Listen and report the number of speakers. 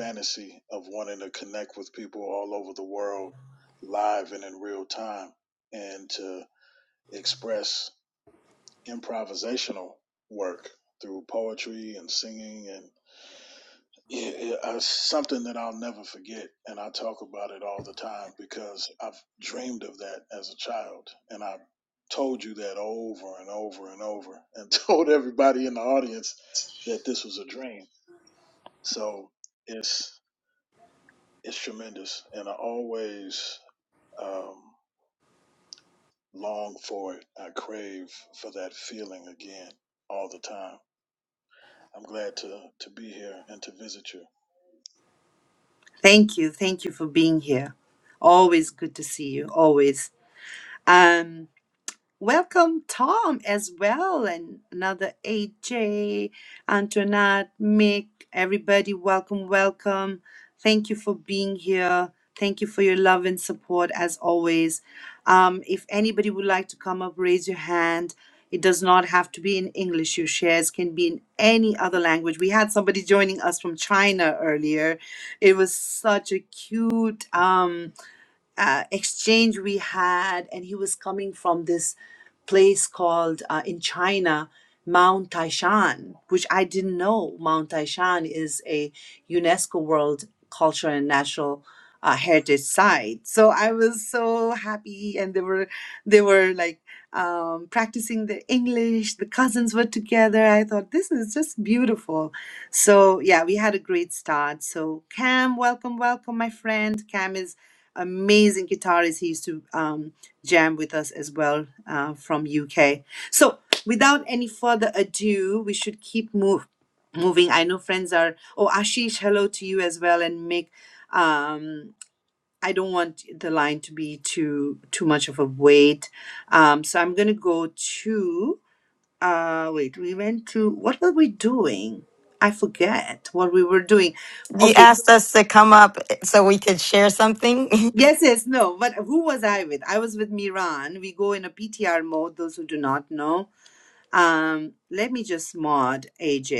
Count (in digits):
3